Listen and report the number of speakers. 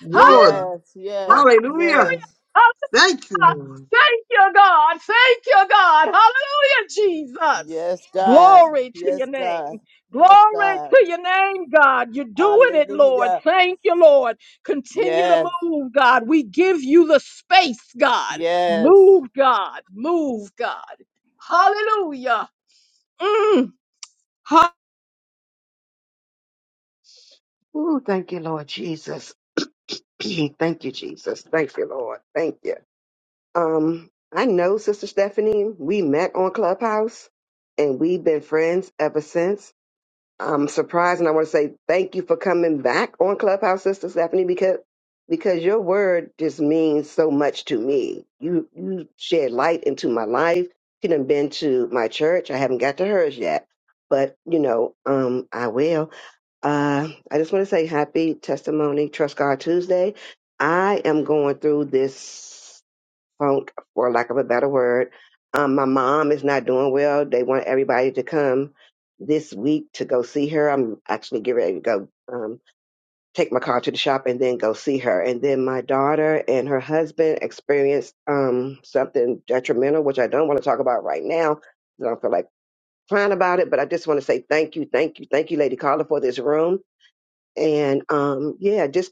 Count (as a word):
four